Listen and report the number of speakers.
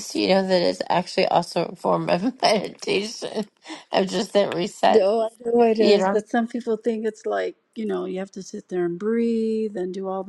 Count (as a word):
two